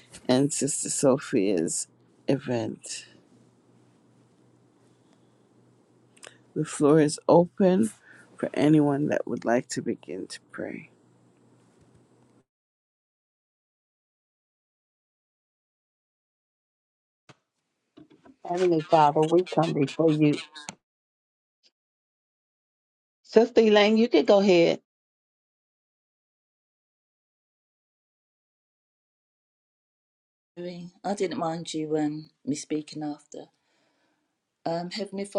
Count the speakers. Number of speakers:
3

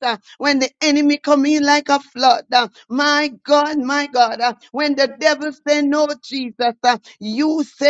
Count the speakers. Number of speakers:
1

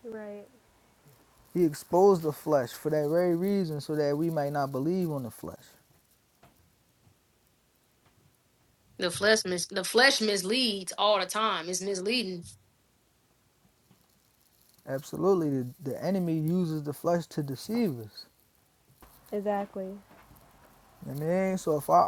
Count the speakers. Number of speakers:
3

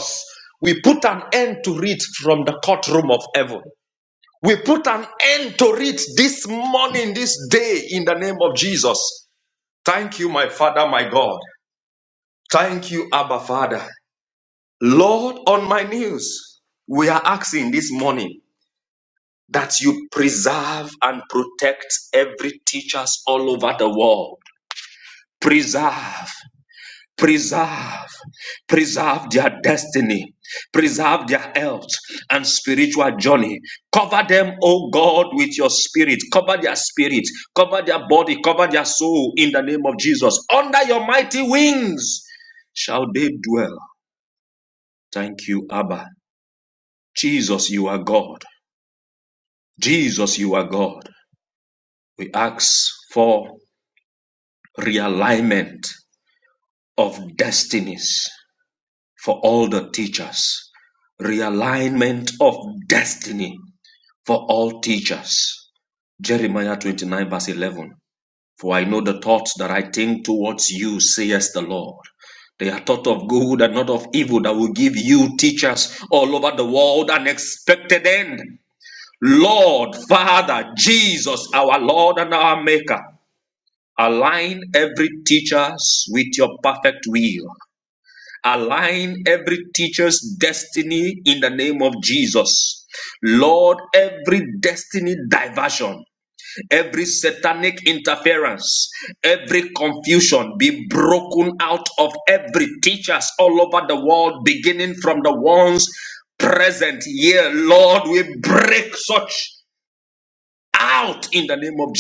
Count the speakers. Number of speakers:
1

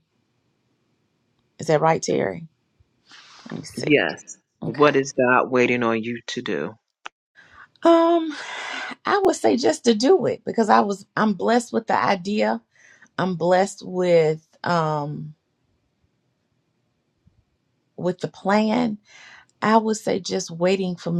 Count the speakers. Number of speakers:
2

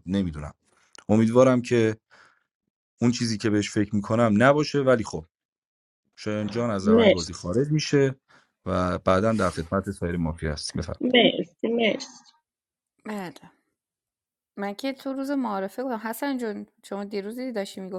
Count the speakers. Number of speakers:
3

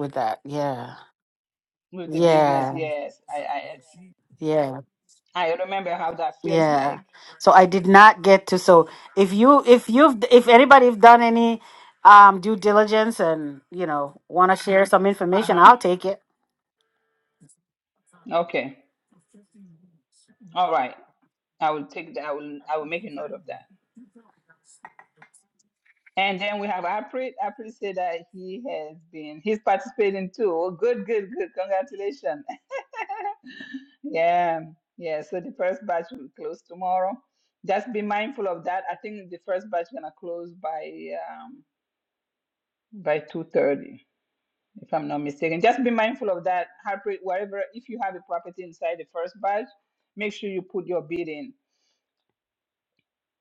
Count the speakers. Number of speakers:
2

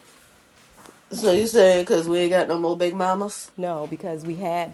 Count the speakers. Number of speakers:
2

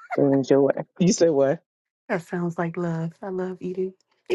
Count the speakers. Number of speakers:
2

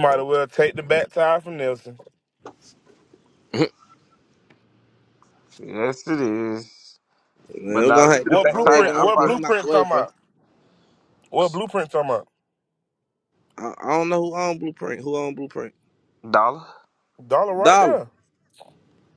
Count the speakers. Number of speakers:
3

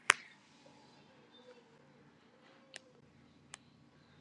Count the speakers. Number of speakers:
0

